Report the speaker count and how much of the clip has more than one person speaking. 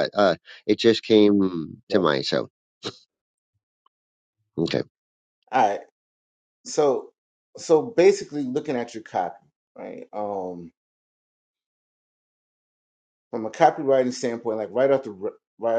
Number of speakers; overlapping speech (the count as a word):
two, no overlap